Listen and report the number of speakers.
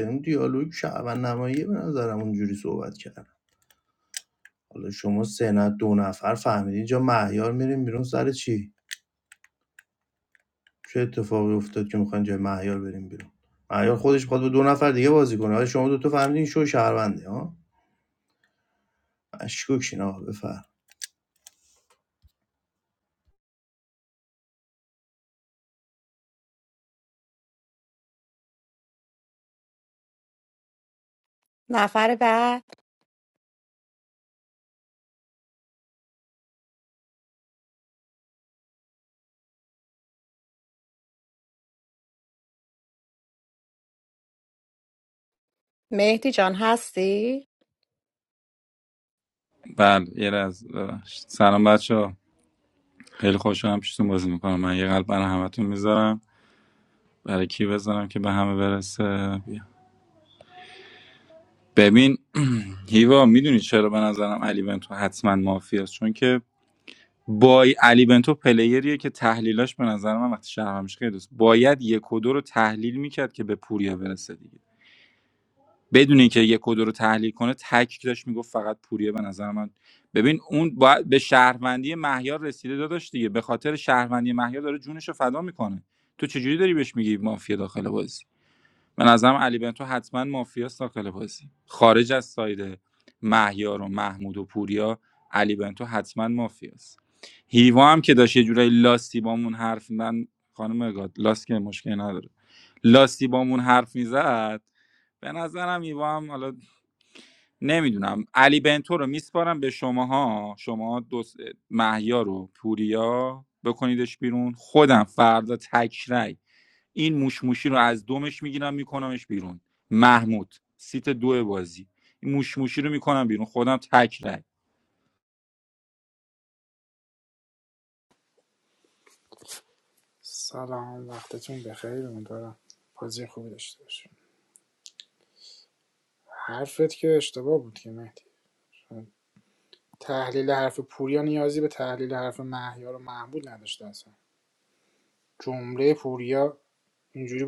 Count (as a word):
four